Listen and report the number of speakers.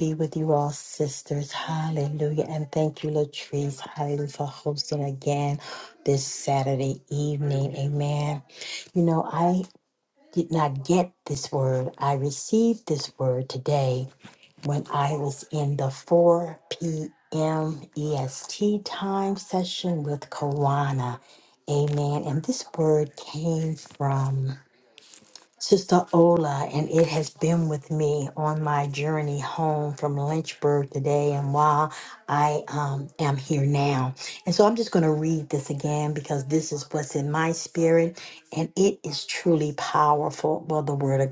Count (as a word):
one